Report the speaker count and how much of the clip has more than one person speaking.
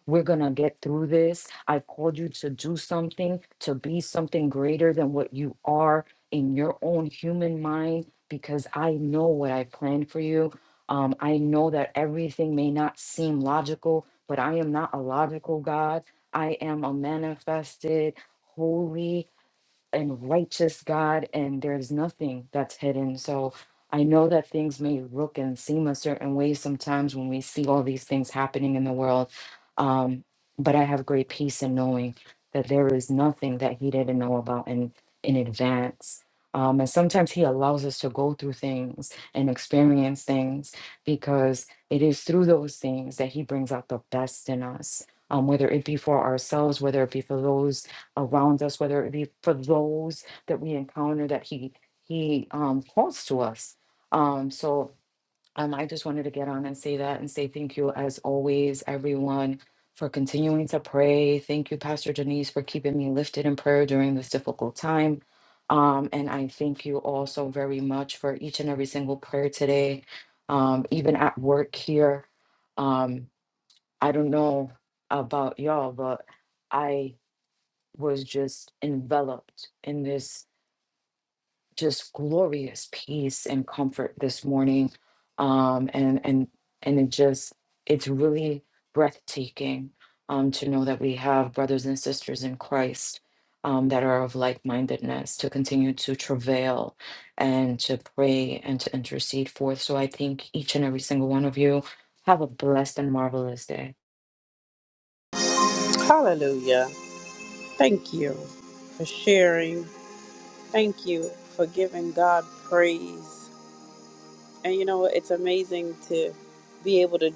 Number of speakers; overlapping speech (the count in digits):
2, no overlap